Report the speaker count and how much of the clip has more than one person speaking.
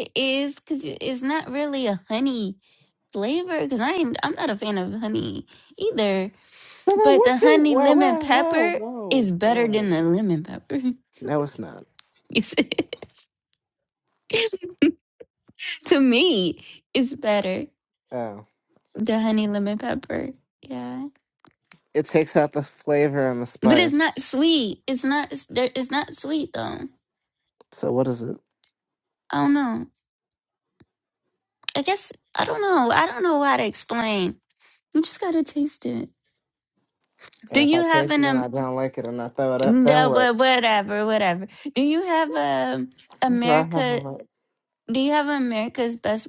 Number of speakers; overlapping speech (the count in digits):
2, about 12%